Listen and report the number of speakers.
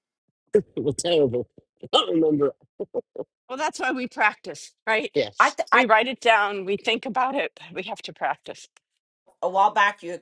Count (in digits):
3